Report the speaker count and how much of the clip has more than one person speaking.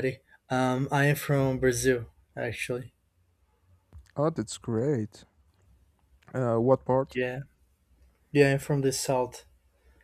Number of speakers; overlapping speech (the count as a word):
two, under 1%